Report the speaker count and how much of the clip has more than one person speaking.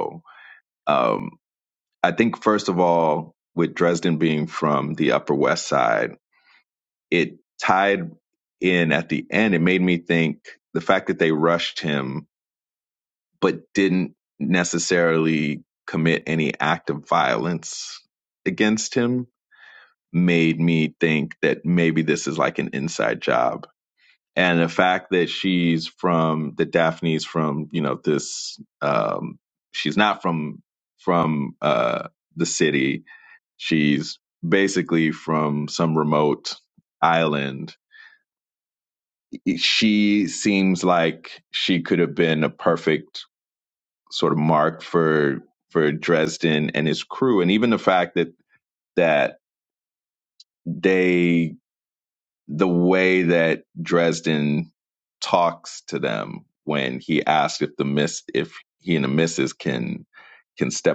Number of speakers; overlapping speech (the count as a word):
one, no overlap